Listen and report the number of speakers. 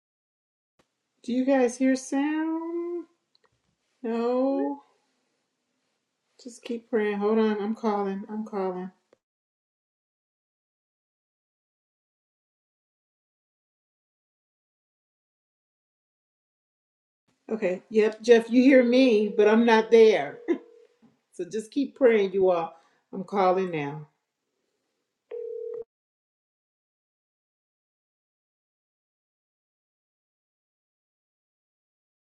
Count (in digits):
1